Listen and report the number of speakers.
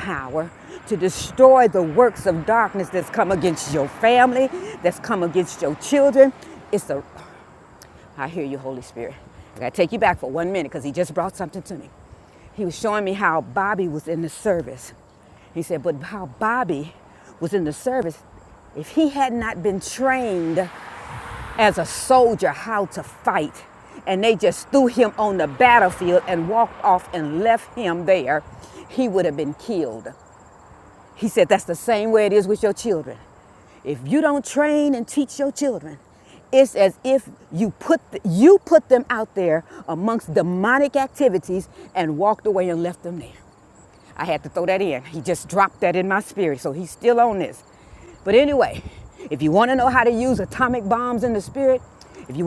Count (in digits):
1